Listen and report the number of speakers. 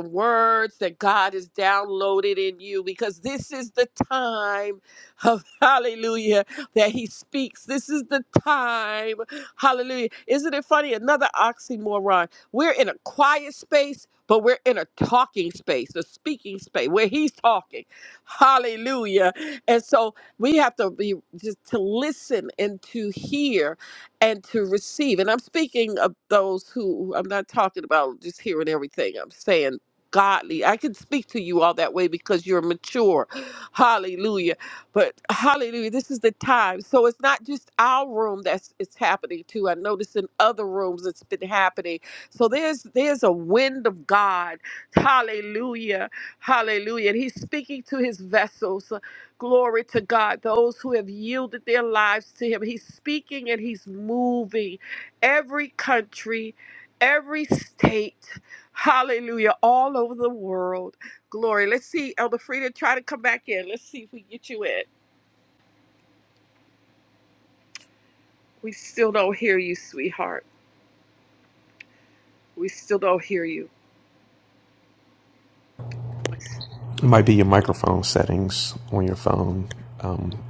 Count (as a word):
two